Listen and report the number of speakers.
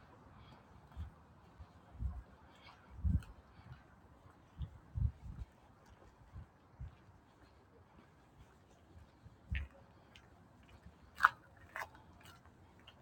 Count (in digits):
0